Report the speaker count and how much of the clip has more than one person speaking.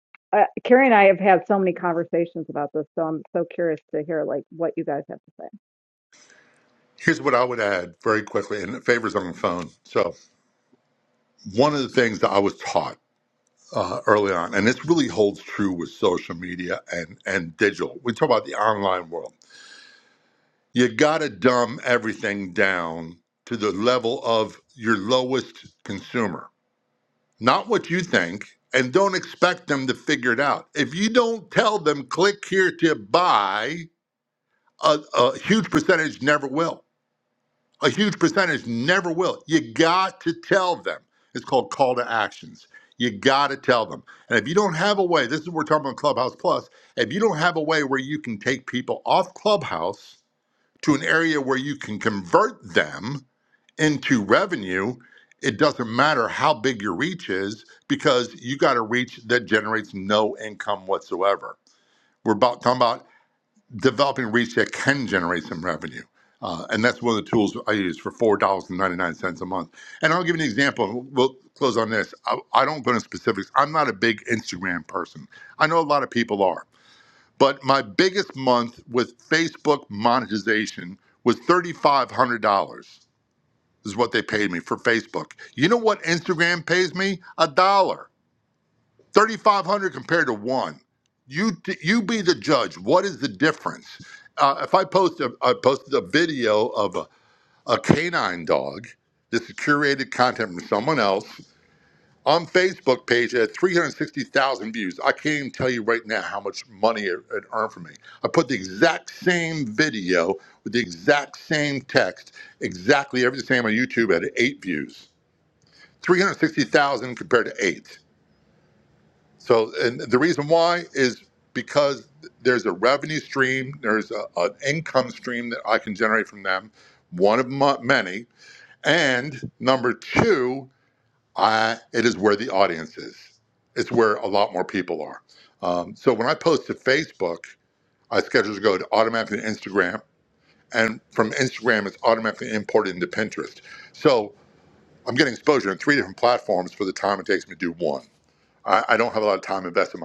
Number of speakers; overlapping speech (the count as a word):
two, no overlap